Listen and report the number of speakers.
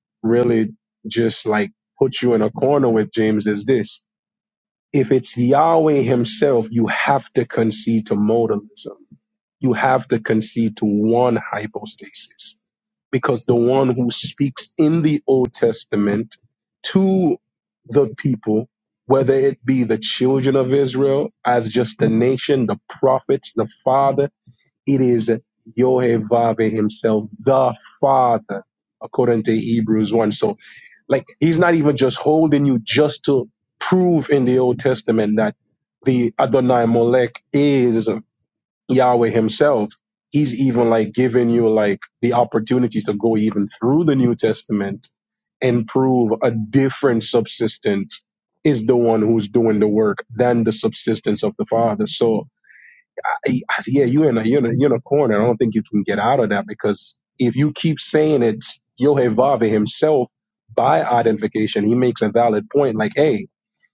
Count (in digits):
1